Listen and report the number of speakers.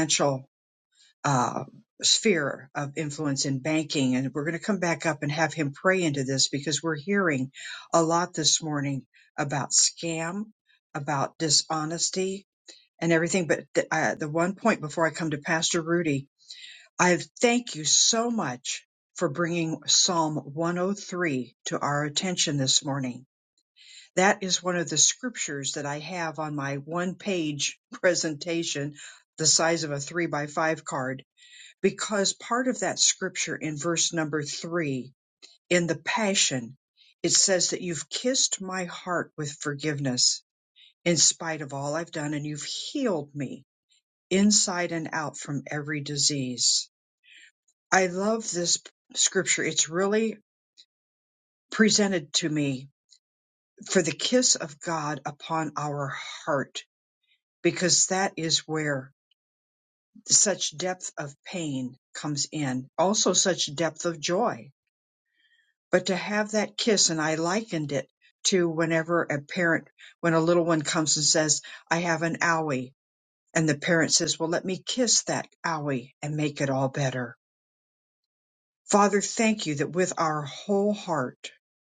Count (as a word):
one